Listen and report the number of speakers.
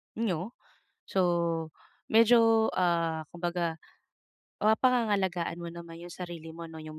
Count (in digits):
1